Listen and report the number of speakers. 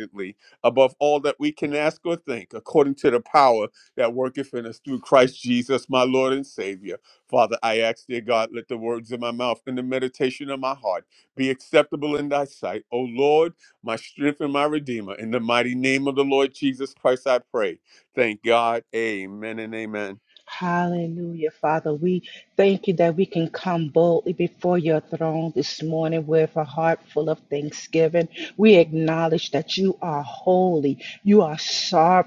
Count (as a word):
two